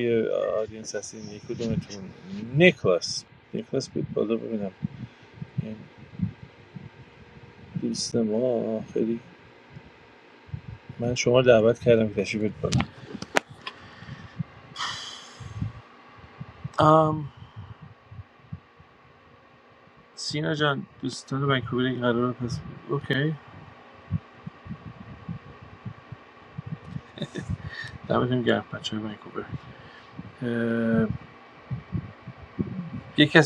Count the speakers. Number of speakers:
one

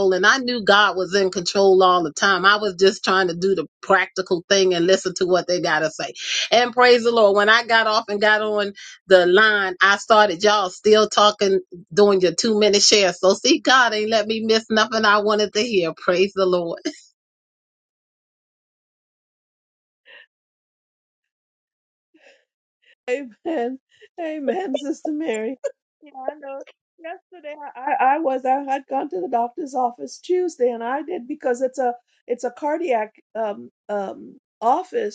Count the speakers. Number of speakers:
two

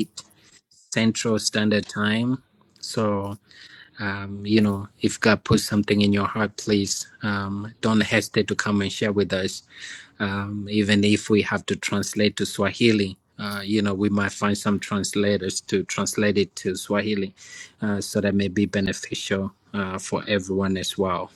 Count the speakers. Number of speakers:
one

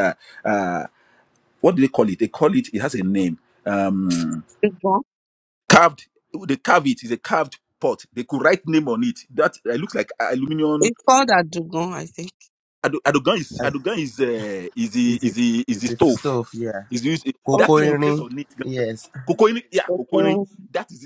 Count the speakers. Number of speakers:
three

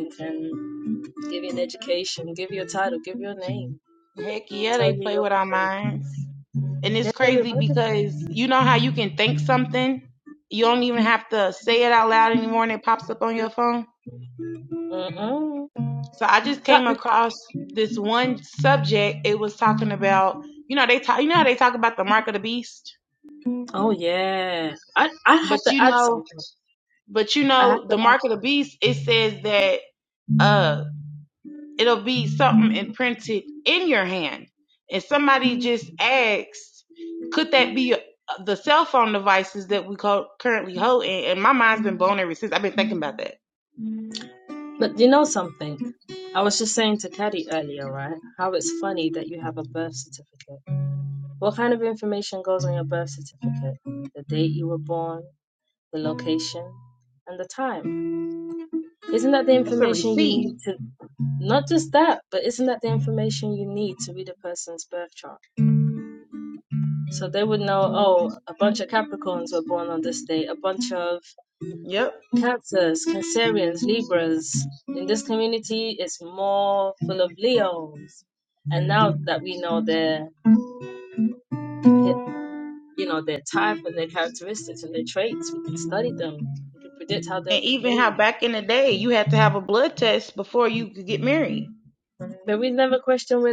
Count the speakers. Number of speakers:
two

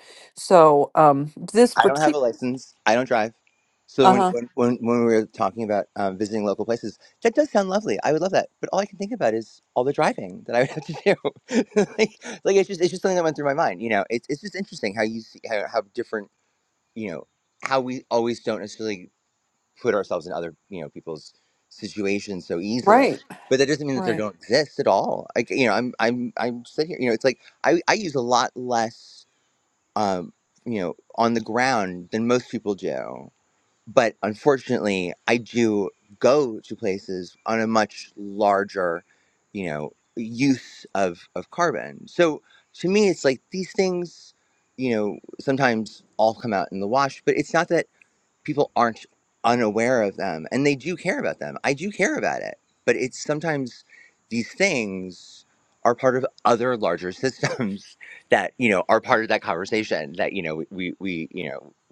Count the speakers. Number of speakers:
two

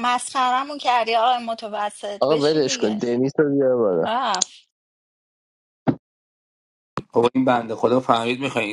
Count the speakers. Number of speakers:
three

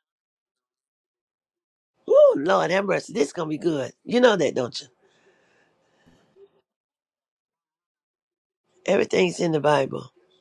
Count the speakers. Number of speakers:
one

